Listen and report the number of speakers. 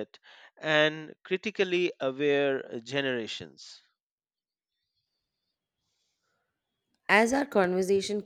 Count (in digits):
2